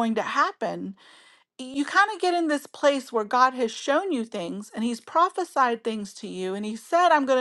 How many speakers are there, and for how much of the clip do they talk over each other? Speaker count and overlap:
1, no overlap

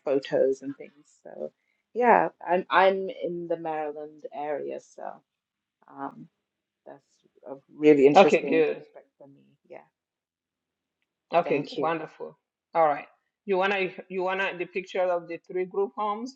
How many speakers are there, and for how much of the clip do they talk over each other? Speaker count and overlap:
2, about 6%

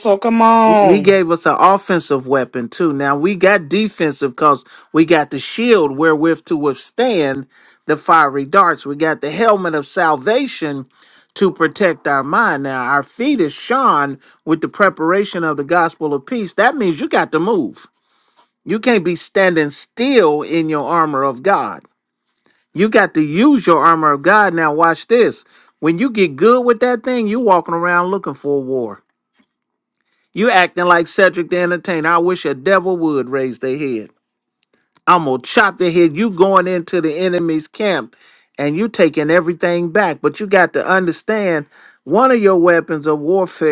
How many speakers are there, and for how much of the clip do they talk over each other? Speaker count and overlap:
2, about 1%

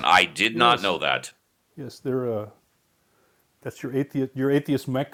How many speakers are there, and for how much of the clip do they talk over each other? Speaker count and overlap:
2, about 8%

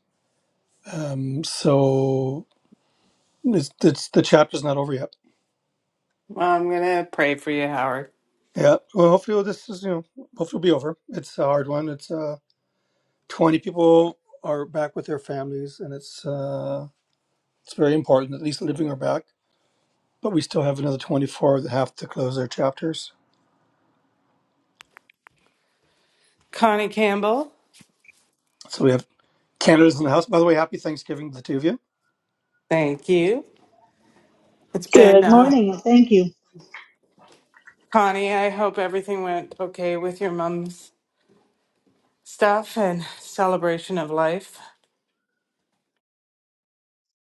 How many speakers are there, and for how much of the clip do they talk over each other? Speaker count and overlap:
3, about 1%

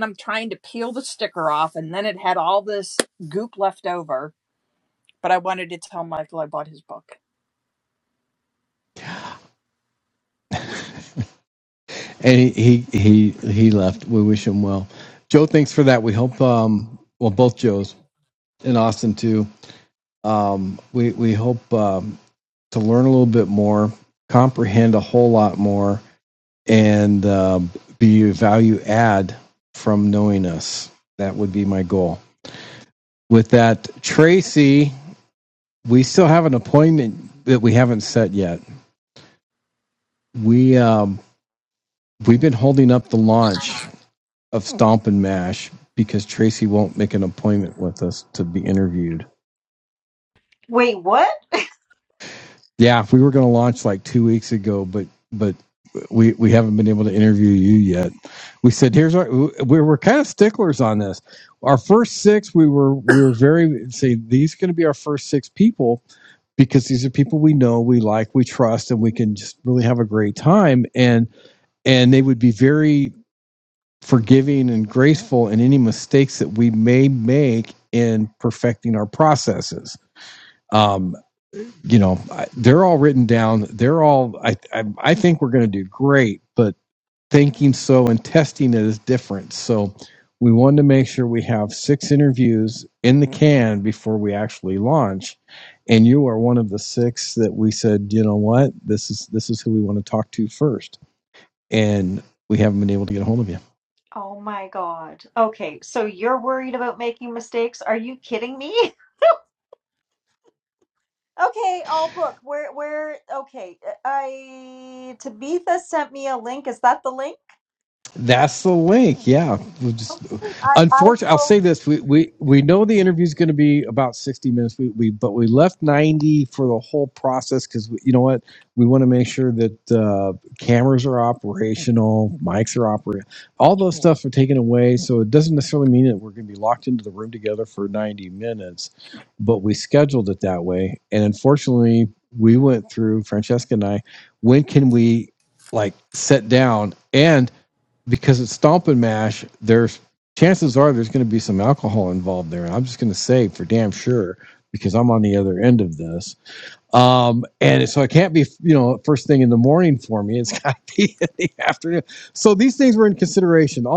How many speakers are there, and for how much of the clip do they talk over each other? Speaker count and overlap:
3, about 1%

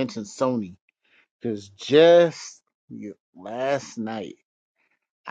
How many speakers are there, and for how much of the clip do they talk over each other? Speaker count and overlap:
1, no overlap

